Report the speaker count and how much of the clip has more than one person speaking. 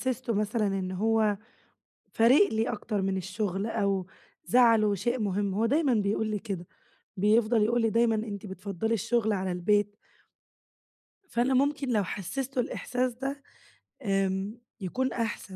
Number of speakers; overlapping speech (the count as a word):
one, no overlap